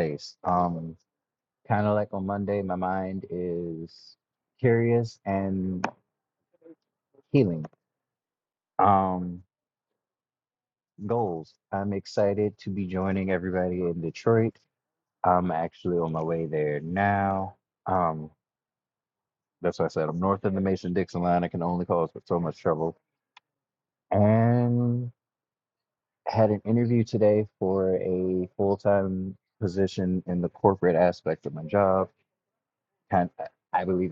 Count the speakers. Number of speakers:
one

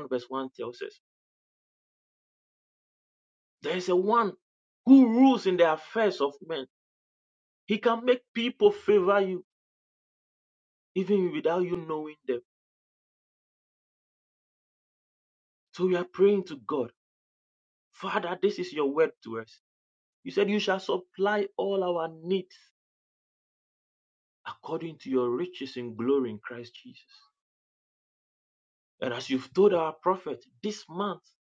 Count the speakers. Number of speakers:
one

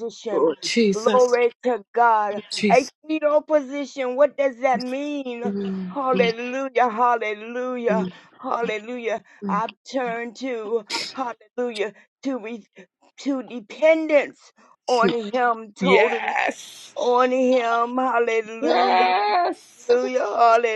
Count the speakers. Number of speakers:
two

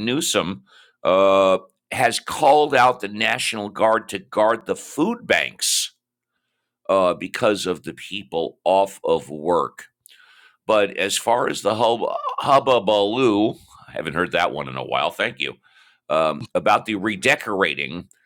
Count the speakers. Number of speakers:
one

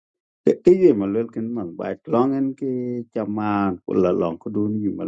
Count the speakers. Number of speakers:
one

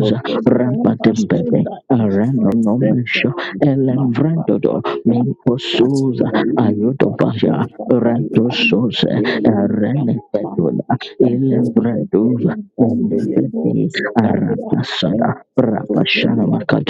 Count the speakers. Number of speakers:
two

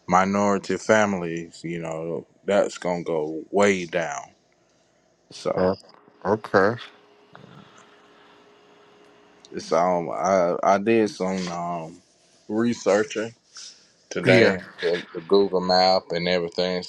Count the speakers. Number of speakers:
two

